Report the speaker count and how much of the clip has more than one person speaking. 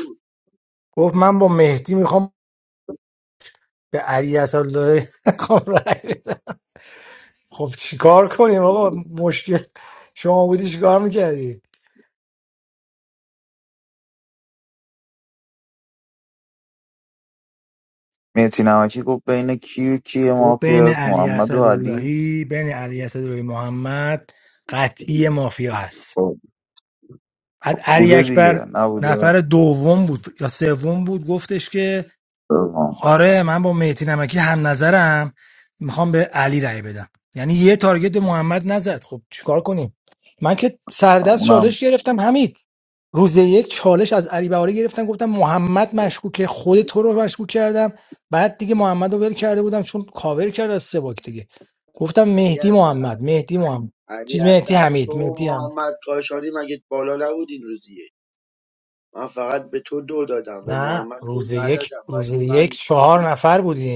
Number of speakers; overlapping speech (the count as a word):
three, about 12%